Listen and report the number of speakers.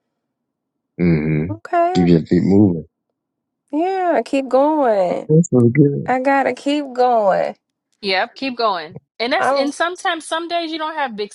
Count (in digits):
3